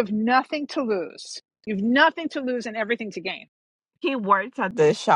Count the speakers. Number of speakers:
2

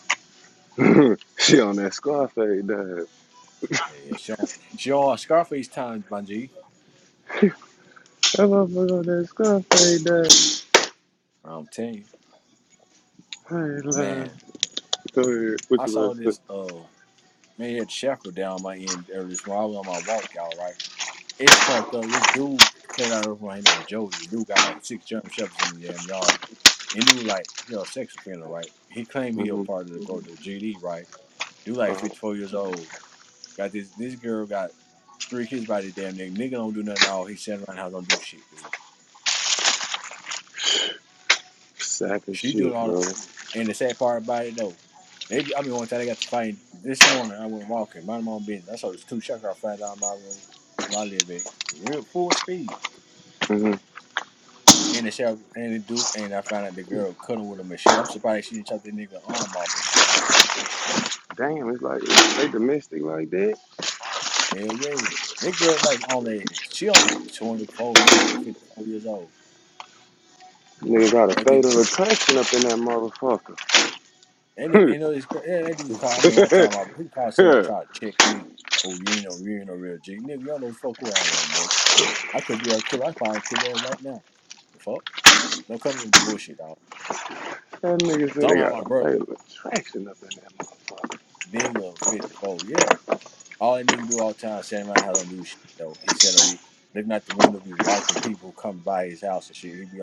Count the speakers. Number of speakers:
2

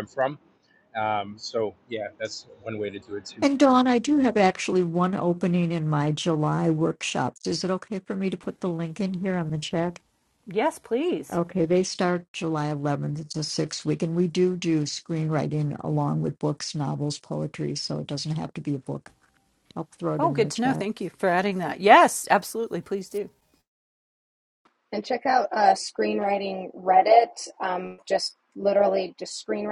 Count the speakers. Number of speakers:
4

